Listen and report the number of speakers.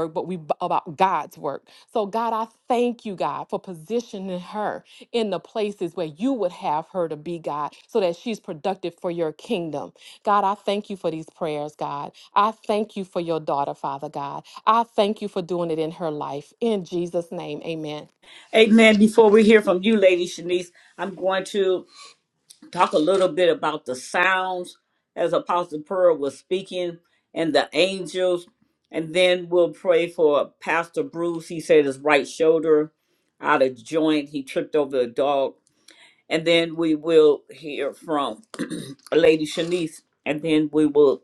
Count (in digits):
2